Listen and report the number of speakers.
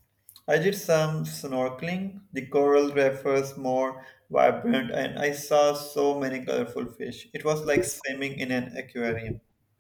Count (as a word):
one